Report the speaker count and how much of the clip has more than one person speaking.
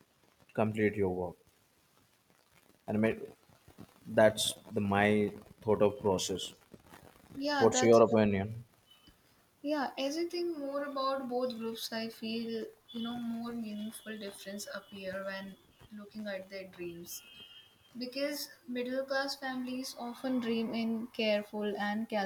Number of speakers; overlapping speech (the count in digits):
2, about 2%